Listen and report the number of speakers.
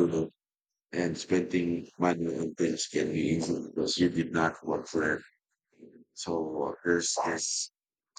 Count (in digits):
1